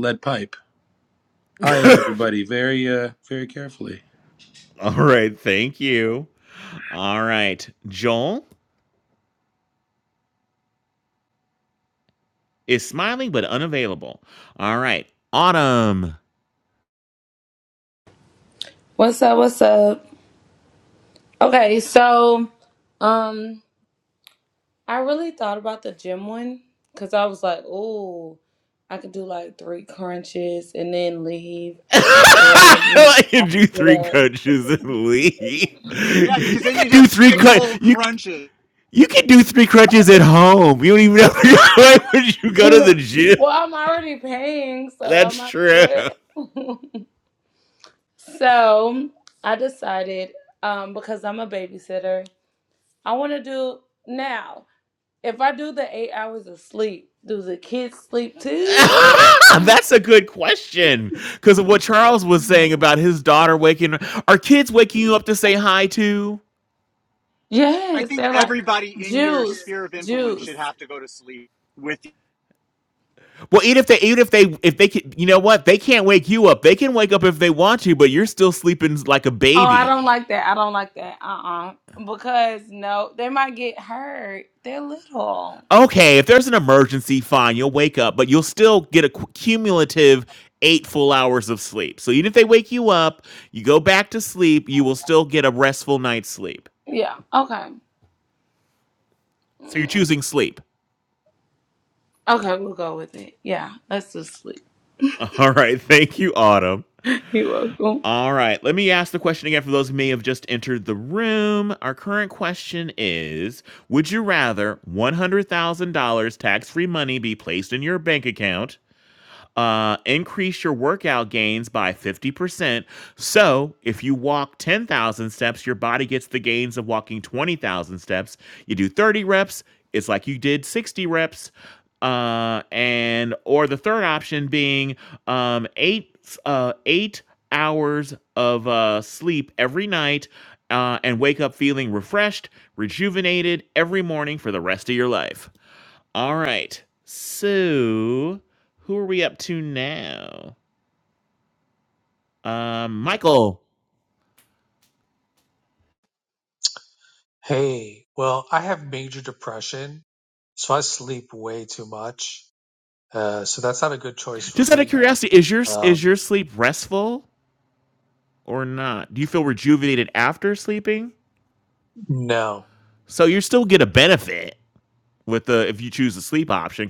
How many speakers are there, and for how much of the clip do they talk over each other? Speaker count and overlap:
five, about 4%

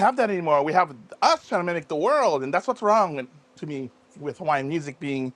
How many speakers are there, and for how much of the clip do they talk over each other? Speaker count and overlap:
one, no overlap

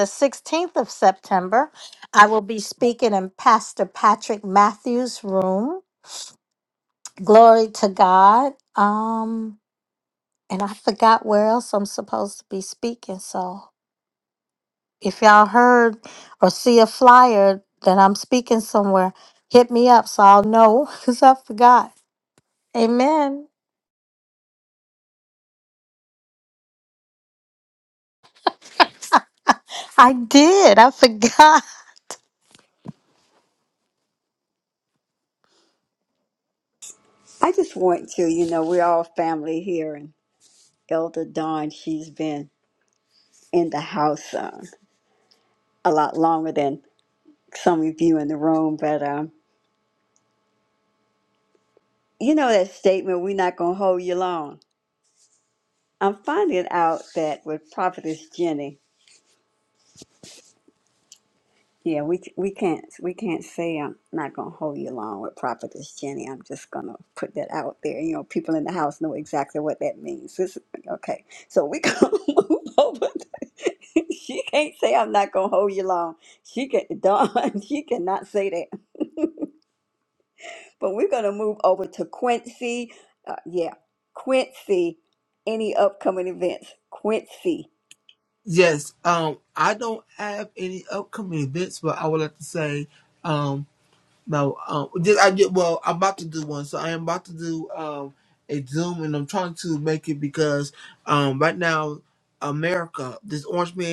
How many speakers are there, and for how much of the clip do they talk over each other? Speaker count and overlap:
three, no overlap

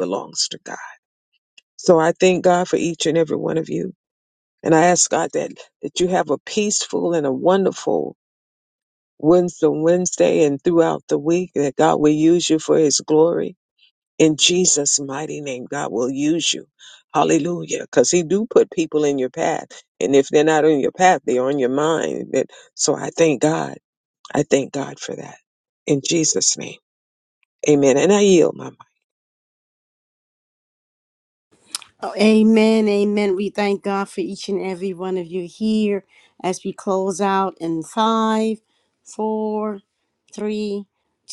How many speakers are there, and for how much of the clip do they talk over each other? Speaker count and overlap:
two, no overlap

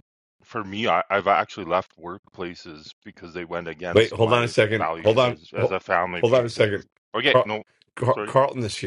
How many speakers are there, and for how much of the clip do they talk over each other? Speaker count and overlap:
two, about 30%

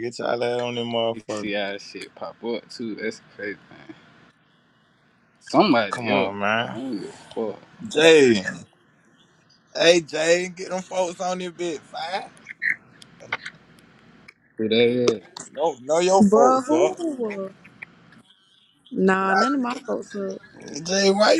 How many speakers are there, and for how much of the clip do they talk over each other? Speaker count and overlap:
three, about 10%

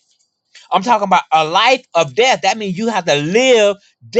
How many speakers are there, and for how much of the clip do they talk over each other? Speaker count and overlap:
one, no overlap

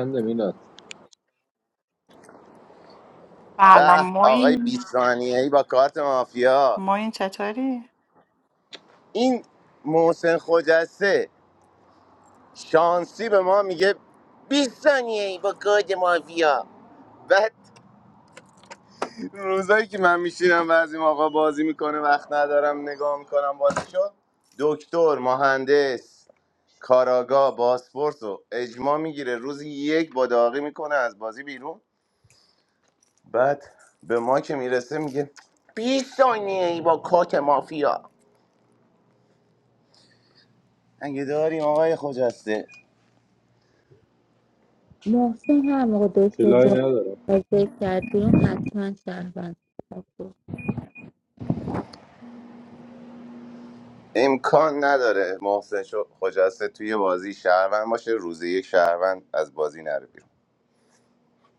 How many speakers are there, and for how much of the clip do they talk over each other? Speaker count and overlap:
four, about 2%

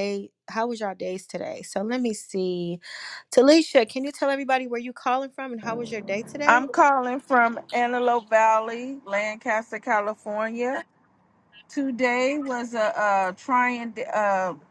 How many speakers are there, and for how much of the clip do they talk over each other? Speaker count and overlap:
two, about 1%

